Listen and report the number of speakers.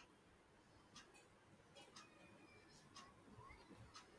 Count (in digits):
0